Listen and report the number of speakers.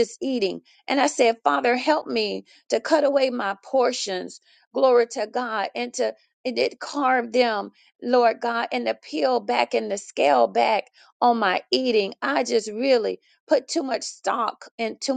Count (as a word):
one